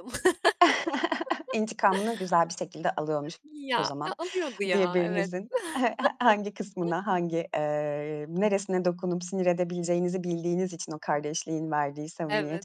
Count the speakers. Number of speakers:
2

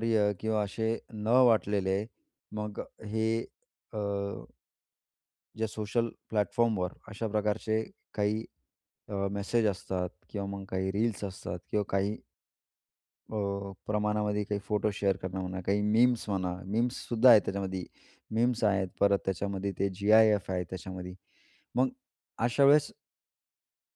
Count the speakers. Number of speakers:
1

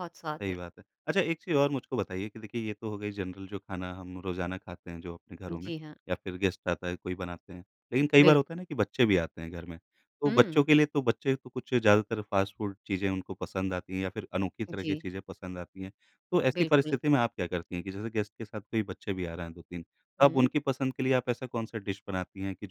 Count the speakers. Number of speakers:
2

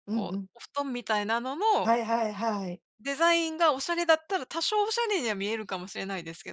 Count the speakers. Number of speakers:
2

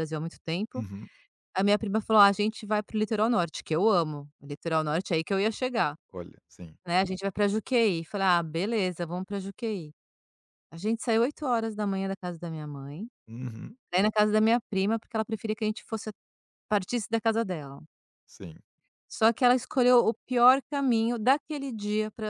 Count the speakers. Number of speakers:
2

